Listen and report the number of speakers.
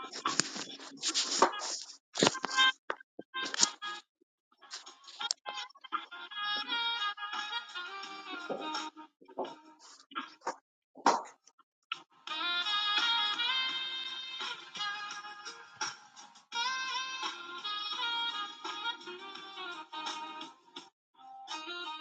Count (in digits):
0